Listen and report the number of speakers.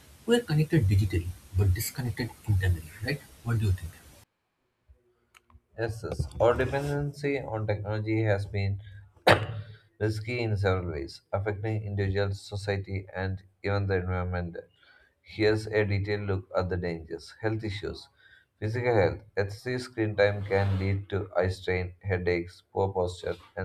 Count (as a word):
two